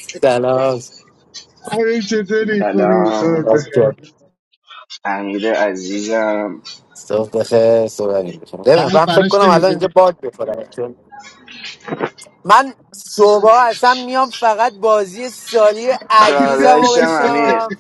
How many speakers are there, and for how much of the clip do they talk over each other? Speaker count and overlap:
three, about 22%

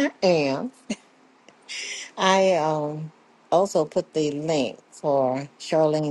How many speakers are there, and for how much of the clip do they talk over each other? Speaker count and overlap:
one, no overlap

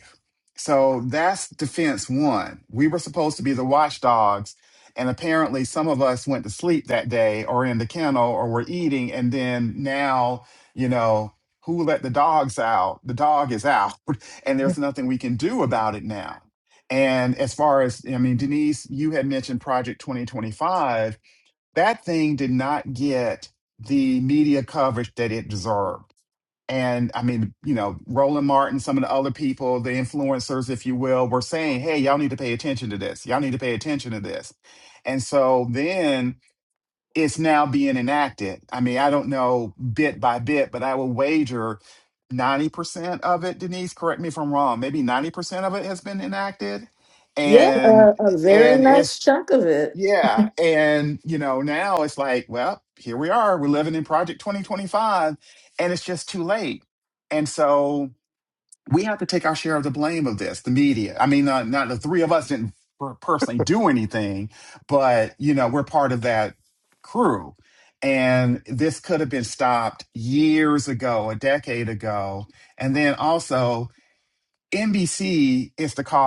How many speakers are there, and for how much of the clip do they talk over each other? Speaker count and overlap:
two, about 2%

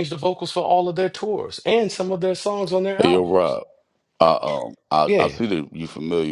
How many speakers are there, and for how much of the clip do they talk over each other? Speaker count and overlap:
two, about 14%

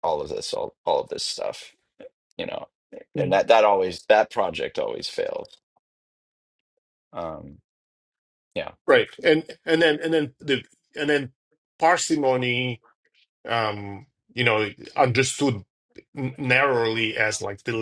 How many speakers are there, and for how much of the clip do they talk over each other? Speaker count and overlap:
two, about 1%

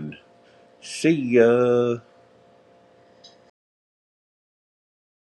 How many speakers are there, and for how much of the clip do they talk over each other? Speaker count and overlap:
one, no overlap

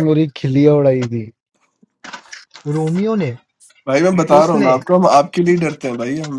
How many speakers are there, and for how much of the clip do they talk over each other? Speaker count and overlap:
three, about 7%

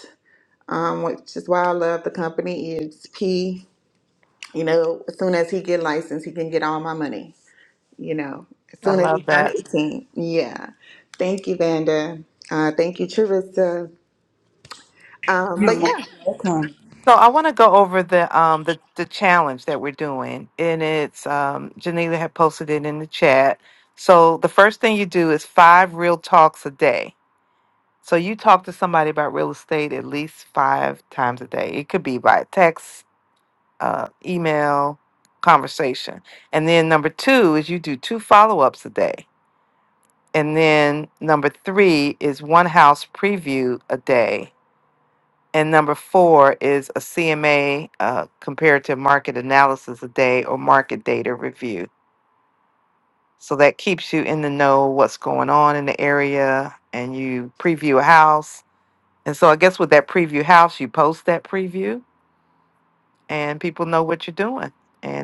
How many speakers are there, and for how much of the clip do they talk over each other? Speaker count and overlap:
three, about 2%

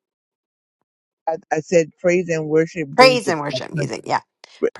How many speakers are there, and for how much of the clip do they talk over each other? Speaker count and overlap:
two, about 8%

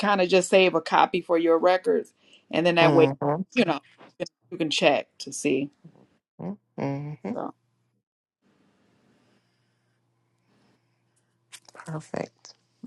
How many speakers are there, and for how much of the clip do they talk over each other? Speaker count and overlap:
two, about 2%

